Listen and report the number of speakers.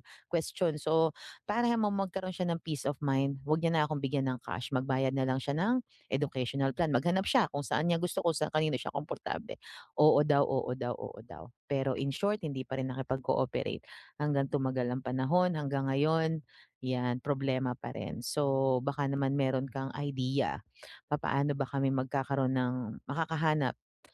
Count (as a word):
one